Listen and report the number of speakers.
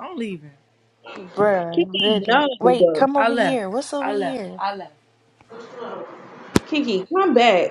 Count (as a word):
three